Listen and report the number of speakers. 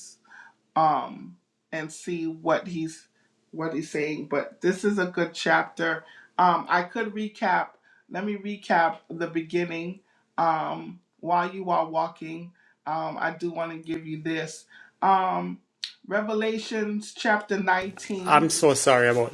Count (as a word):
two